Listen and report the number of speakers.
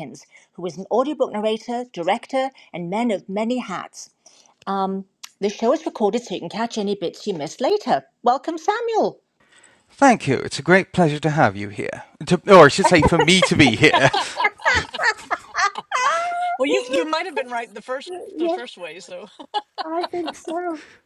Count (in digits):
3